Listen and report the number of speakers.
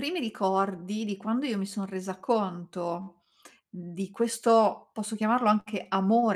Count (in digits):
1